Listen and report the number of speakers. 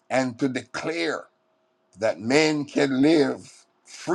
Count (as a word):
one